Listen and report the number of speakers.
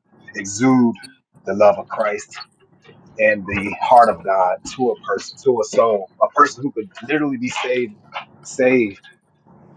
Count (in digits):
1